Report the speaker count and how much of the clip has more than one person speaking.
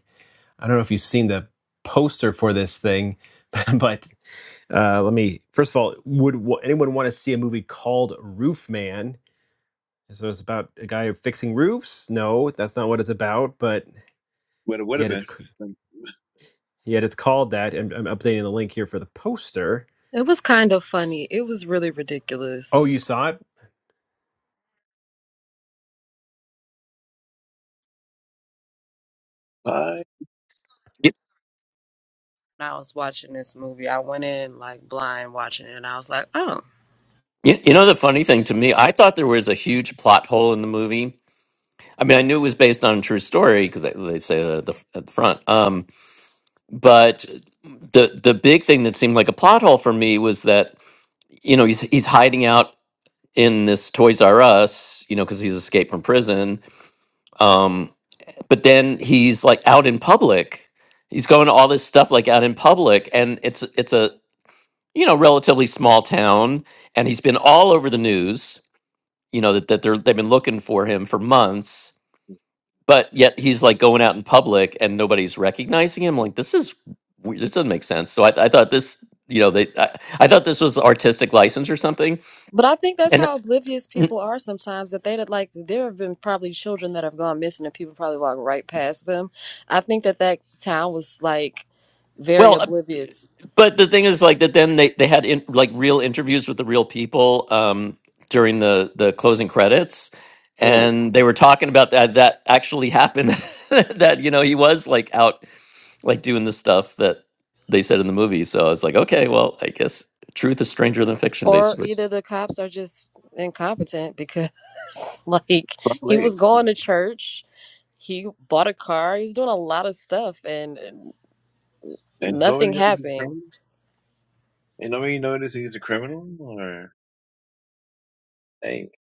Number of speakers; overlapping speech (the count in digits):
4, about 2%